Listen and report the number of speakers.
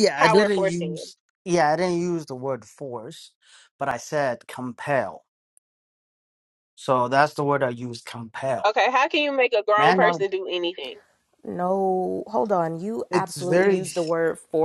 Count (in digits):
3